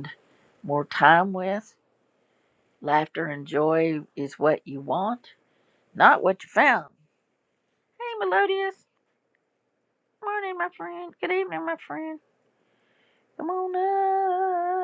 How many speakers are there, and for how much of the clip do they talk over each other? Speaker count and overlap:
1, no overlap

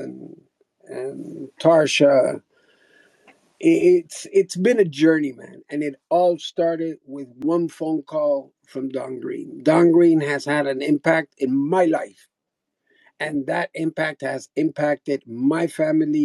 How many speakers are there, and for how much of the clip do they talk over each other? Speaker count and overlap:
1, no overlap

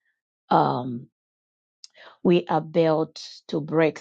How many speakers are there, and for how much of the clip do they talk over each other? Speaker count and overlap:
1, no overlap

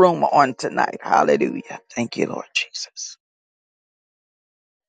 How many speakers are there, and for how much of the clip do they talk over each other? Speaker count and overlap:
1, no overlap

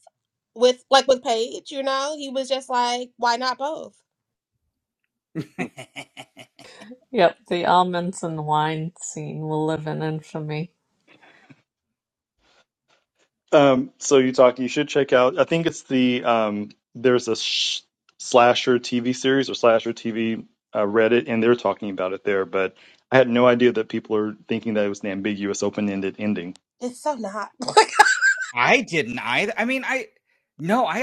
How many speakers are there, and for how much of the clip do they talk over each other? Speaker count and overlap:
4, no overlap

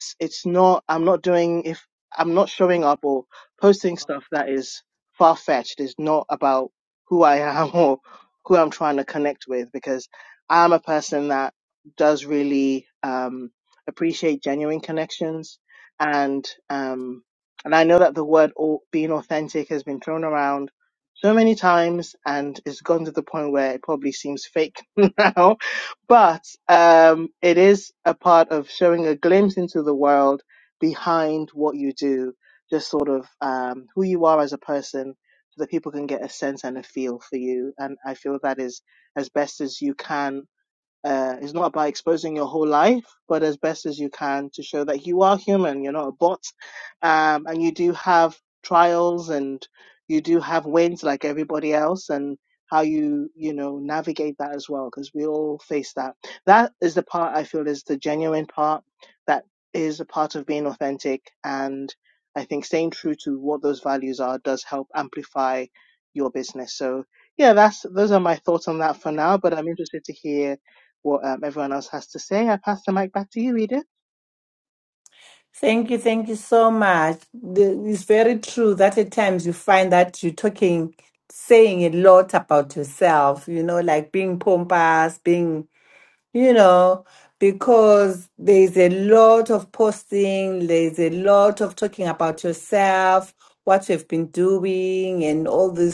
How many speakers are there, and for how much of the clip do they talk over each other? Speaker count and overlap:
2, no overlap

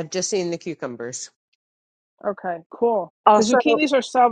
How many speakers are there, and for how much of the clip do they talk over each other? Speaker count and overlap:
2, about 8%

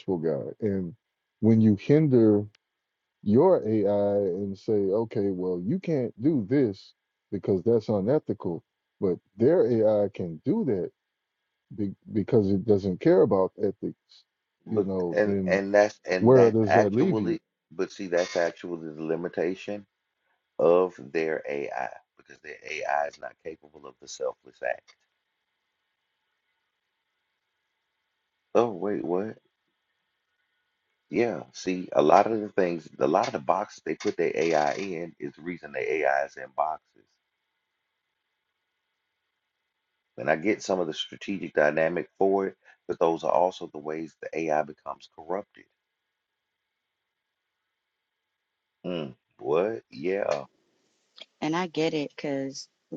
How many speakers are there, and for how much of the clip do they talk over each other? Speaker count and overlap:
3, about 4%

